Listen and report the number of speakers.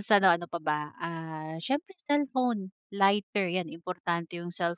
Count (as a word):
one